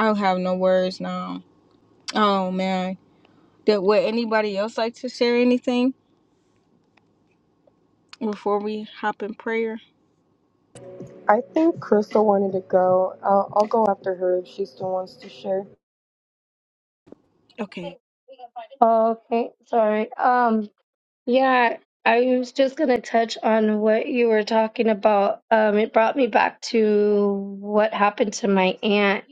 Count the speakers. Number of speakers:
three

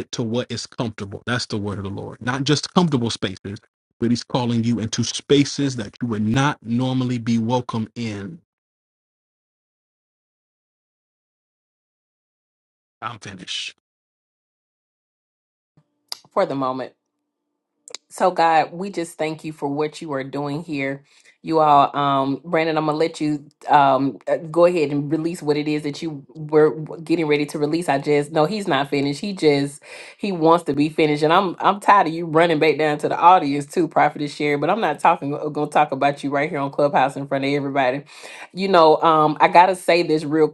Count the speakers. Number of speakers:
two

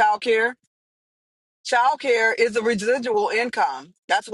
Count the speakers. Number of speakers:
one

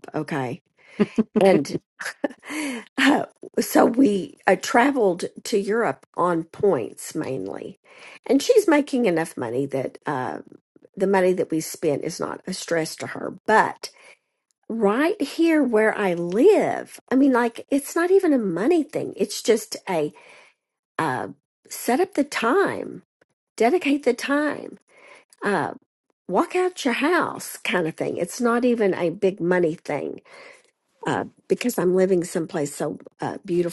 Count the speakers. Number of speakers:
one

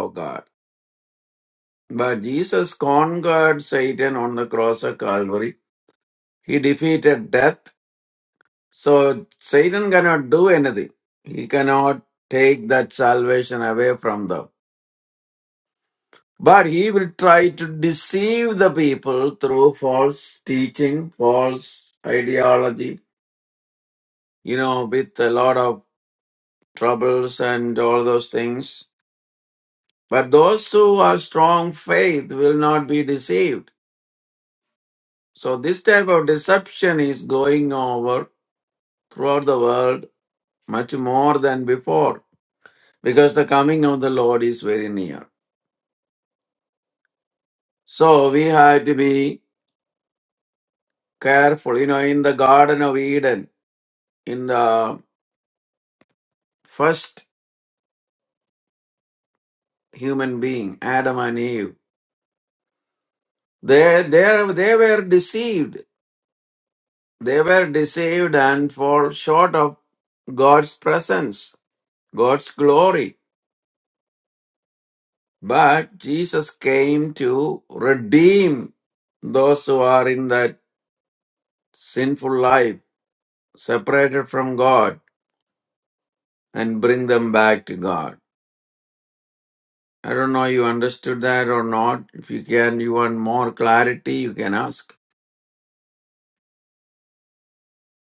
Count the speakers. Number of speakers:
one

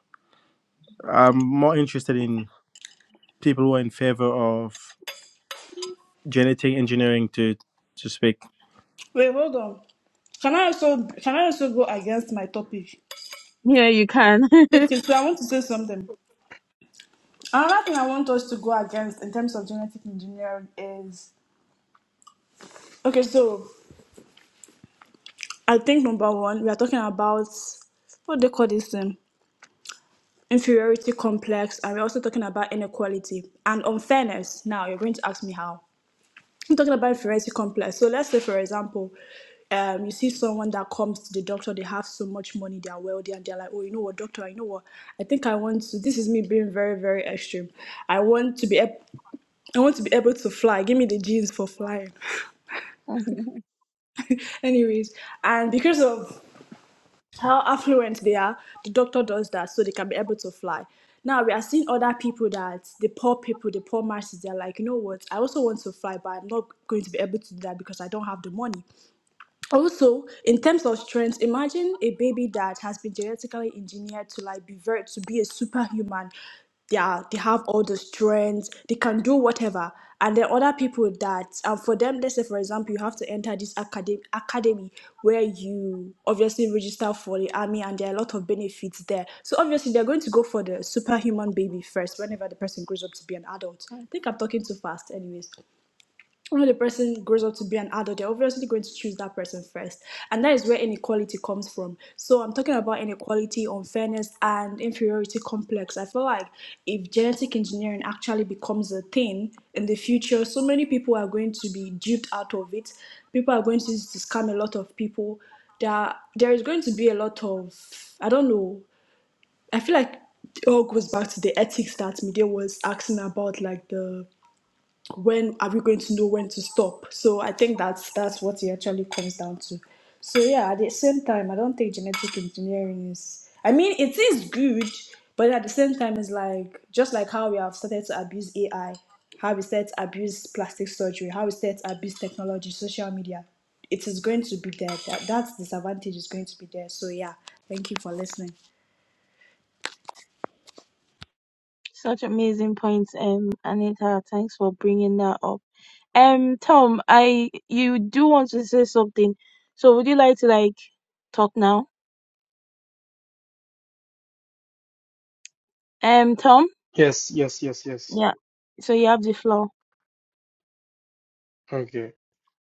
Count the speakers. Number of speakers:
four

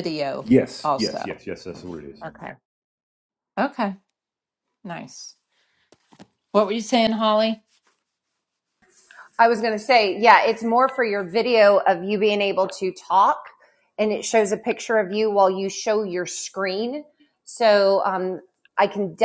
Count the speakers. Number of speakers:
three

